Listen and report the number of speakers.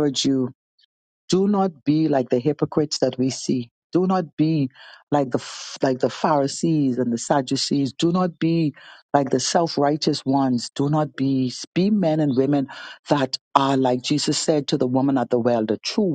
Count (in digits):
1